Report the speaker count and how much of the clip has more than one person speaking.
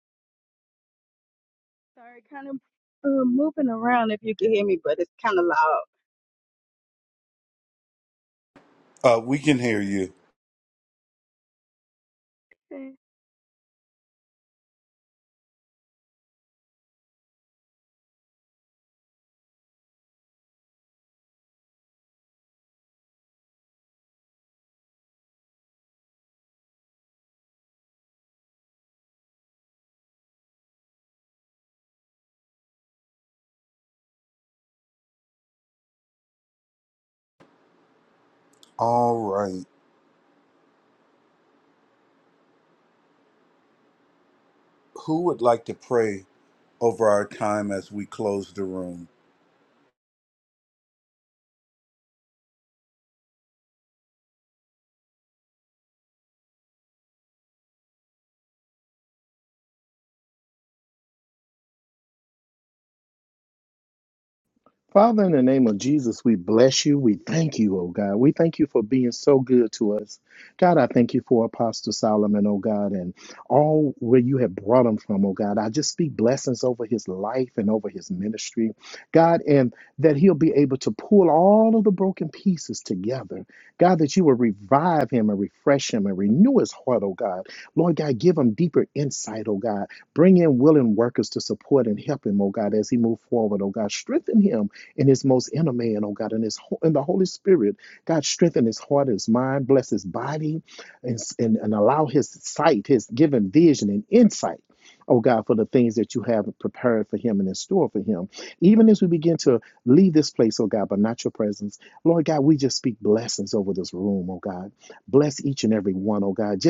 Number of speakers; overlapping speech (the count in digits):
3, no overlap